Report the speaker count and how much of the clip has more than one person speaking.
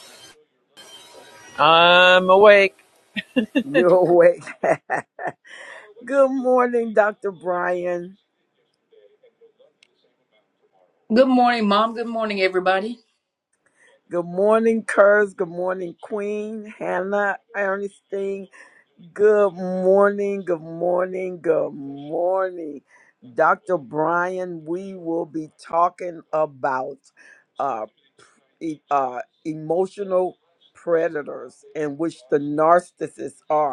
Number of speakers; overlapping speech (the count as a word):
three, no overlap